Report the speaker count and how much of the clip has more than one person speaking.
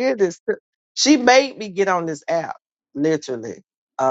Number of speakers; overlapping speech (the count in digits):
1, no overlap